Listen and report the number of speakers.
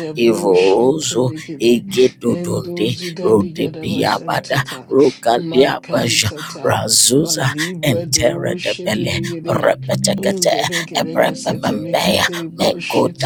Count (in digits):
2